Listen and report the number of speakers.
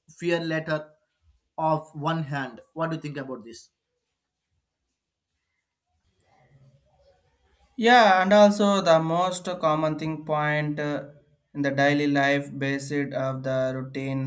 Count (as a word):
two